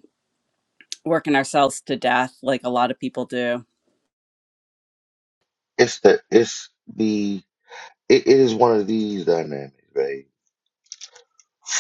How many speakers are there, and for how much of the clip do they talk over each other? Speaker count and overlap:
2, no overlap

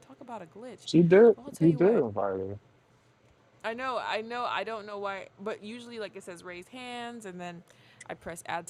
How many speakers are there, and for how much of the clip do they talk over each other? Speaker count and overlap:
2, about 8%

